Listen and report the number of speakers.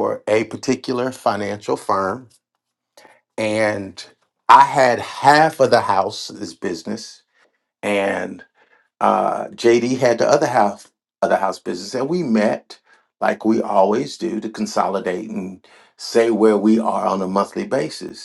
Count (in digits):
1